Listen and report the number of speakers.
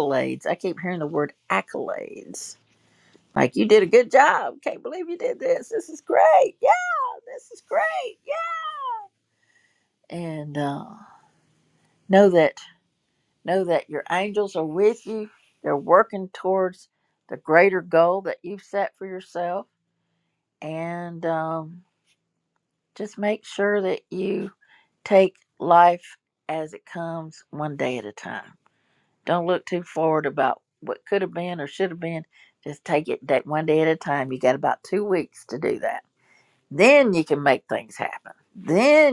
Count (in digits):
1